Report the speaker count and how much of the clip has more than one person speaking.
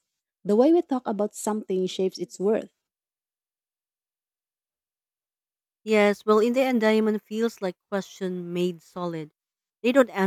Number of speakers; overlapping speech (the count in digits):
2, no overlap